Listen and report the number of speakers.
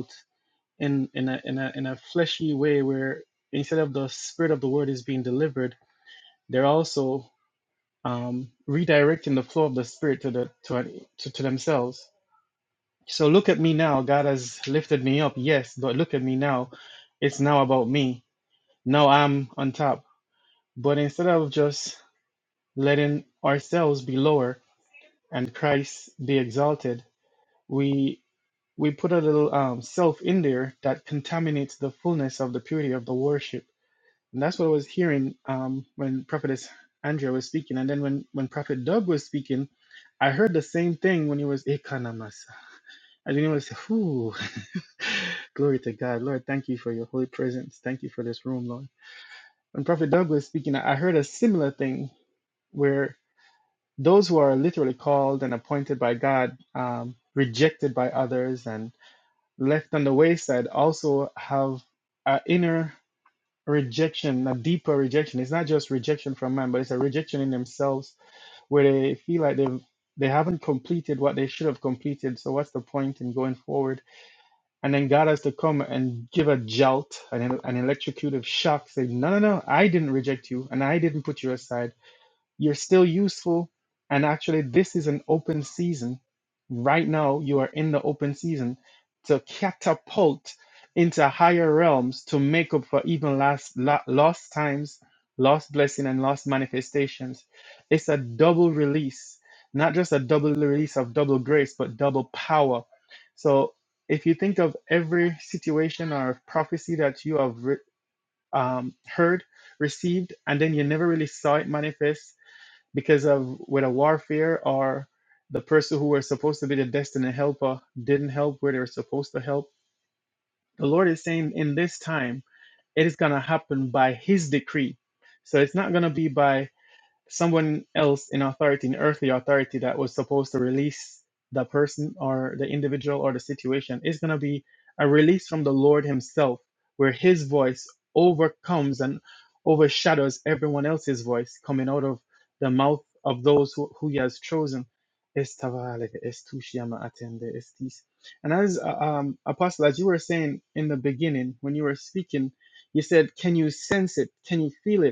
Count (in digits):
1